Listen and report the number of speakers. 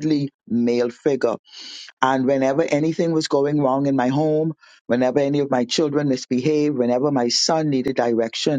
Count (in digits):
1